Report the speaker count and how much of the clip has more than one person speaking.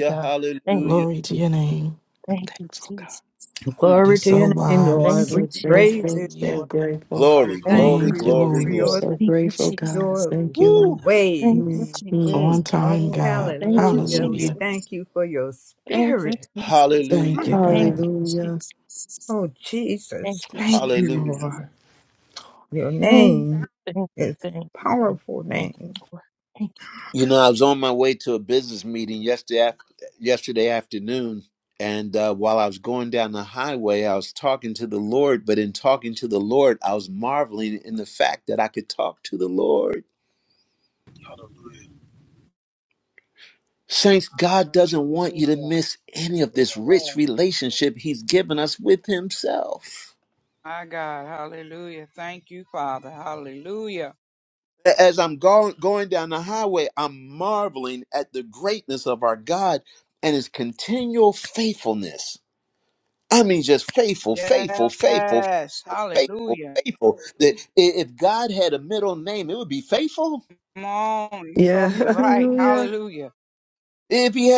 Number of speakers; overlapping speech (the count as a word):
seven, about 27%